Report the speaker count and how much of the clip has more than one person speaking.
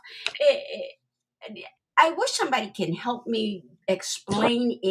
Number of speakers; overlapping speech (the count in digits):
1, no overlap